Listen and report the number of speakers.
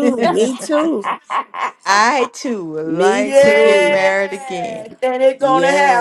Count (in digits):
3